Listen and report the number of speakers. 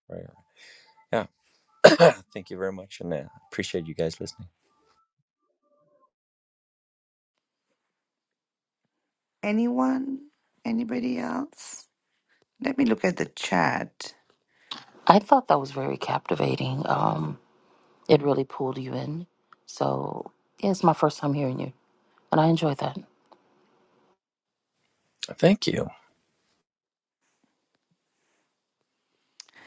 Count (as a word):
three